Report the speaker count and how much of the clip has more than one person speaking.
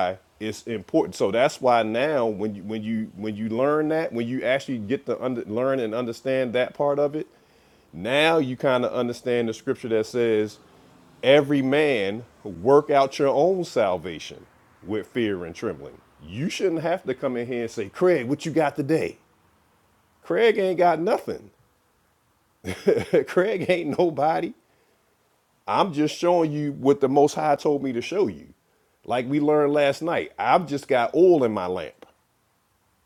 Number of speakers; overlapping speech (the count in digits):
1, no overlap